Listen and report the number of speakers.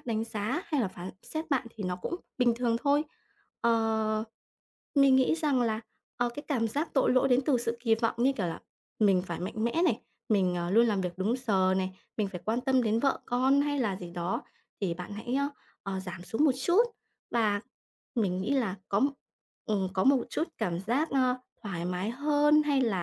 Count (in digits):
1